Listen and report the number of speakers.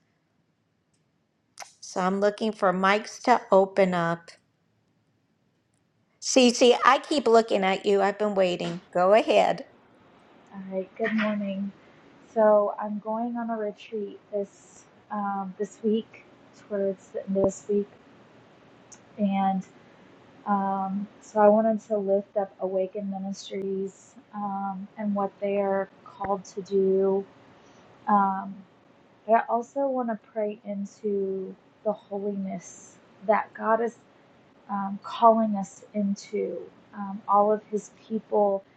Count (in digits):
2